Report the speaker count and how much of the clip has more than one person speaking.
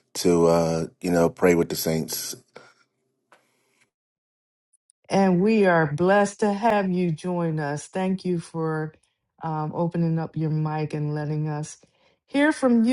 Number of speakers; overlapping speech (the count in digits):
2, no overlap